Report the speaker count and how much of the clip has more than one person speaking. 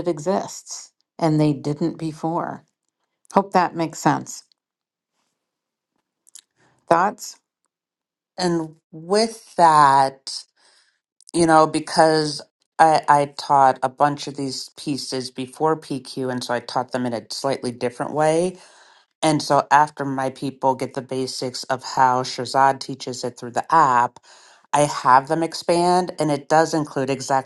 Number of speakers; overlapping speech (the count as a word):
two, no overlap